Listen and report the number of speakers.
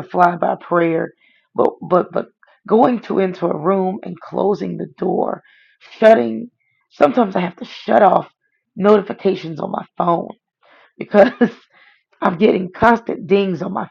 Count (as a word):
one